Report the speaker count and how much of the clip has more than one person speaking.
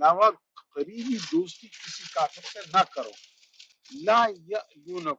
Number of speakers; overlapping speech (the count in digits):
1, no overlap